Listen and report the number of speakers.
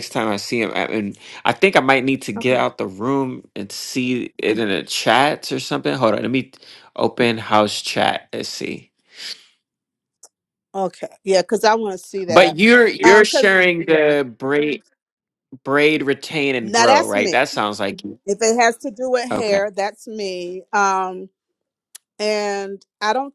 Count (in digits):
2